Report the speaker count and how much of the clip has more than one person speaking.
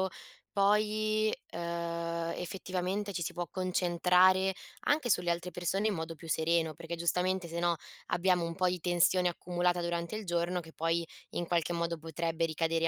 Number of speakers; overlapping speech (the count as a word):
one, no overlap